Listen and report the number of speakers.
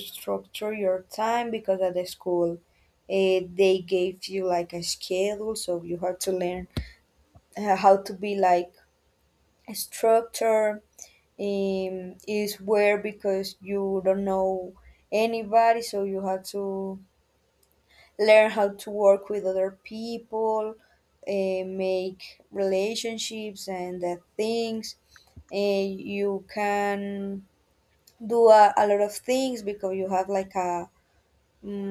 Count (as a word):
one